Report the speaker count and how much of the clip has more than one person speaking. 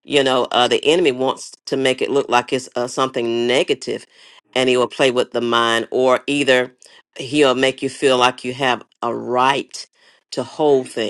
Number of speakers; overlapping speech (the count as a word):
one, no overlap